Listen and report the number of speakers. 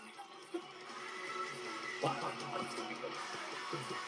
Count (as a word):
zero